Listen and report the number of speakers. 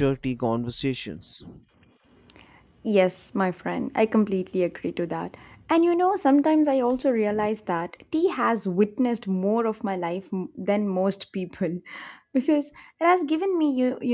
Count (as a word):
two